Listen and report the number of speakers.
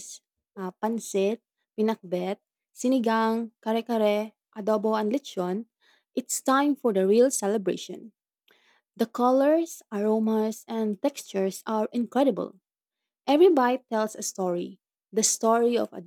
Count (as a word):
one